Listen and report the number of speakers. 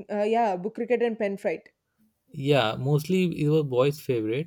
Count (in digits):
2